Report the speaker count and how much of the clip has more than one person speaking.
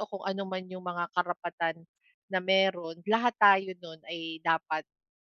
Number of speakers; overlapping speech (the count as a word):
one, no overlap